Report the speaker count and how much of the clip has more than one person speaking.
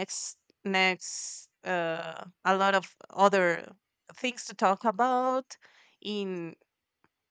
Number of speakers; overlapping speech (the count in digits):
1, no overlap